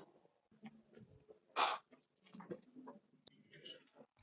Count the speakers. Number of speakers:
zero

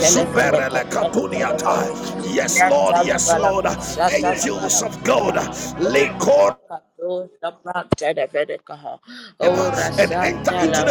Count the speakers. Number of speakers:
two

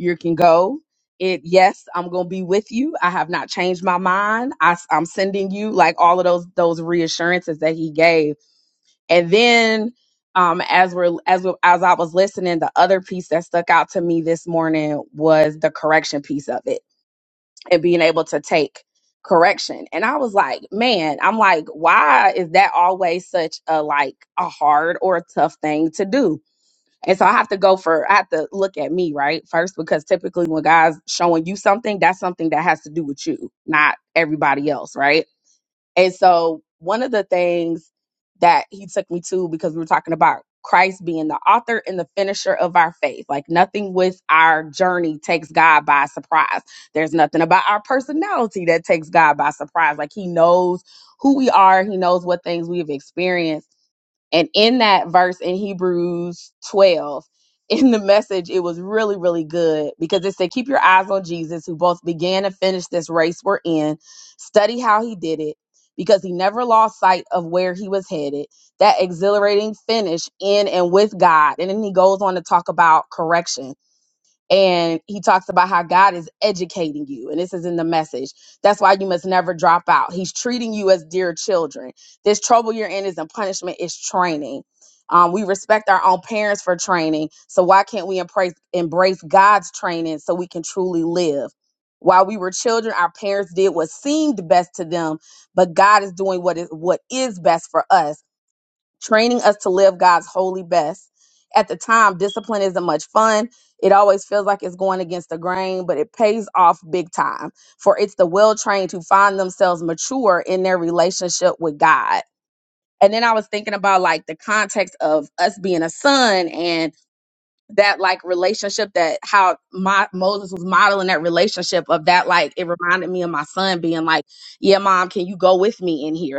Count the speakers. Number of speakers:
one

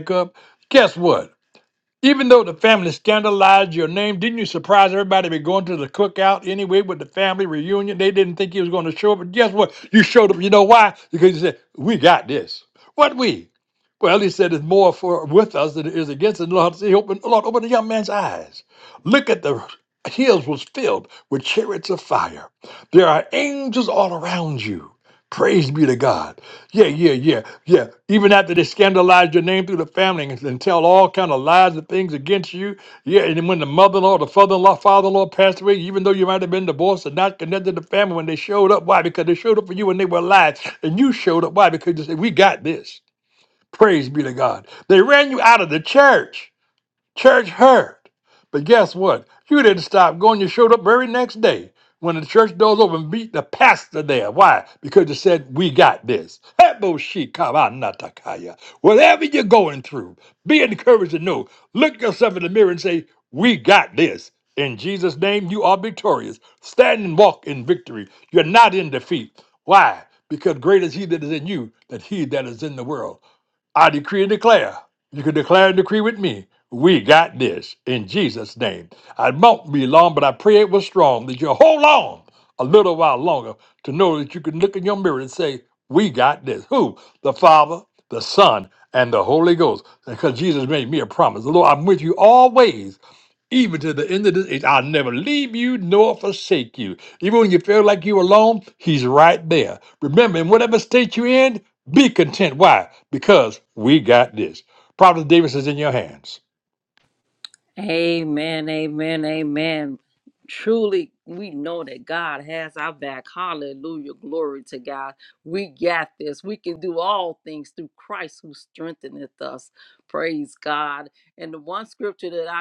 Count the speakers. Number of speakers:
two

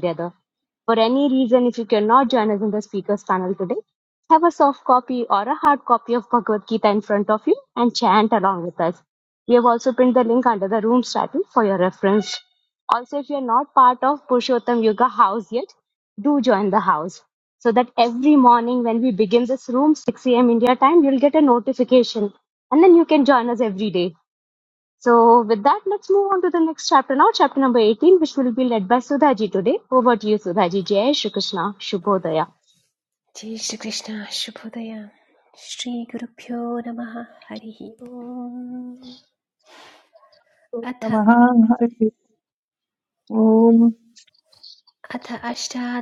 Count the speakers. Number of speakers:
three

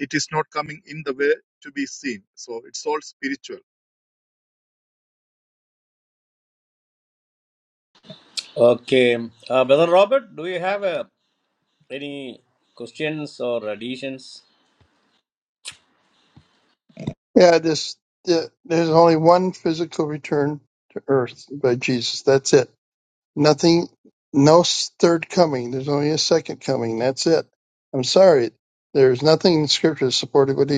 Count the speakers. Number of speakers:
three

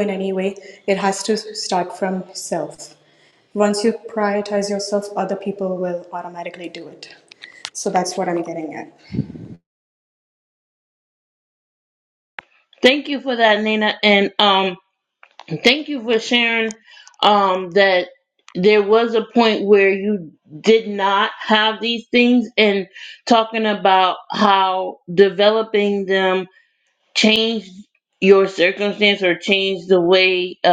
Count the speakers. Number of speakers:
two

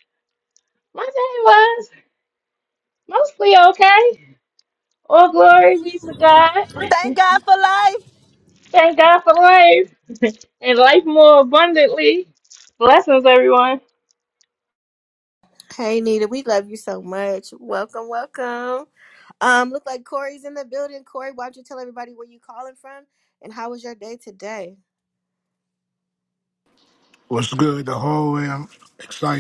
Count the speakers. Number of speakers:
four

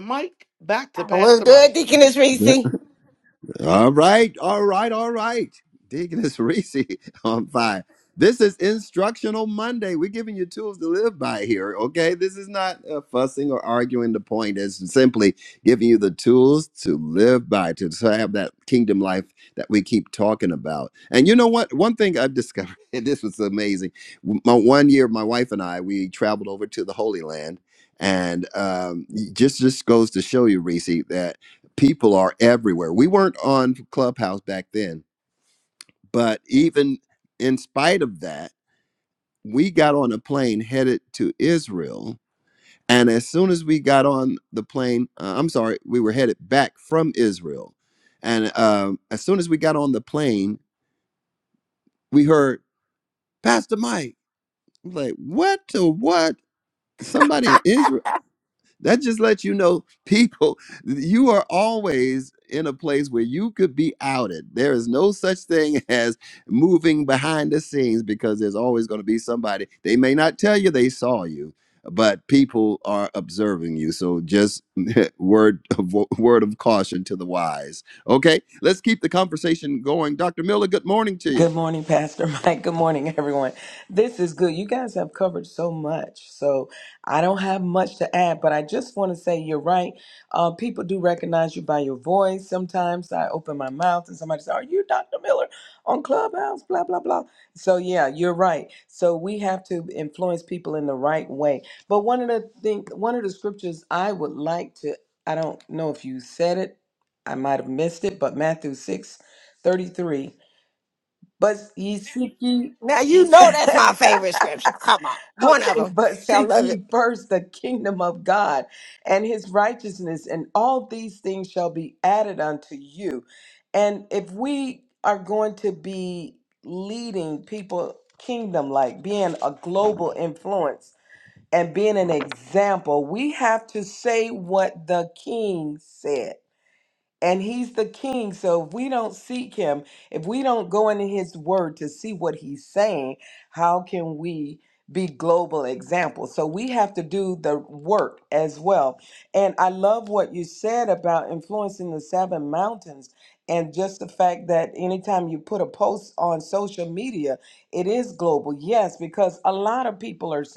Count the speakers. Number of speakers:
four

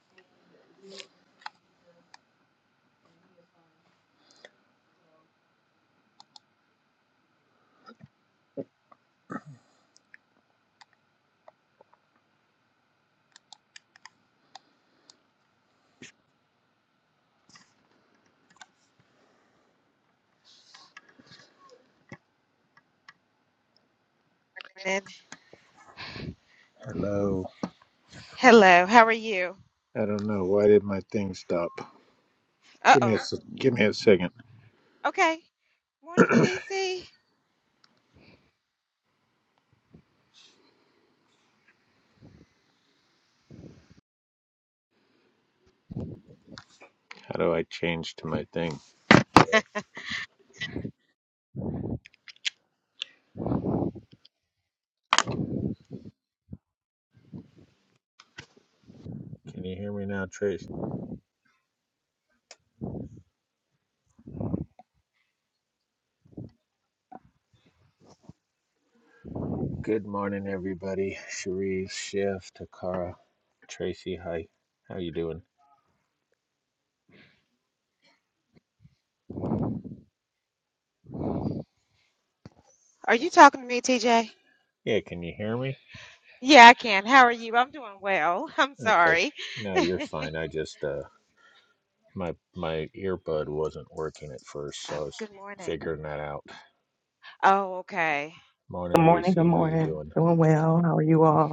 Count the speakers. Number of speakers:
three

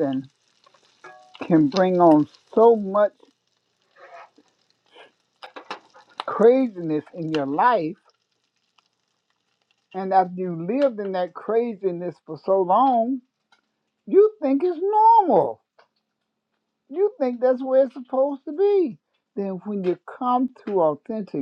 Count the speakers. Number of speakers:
one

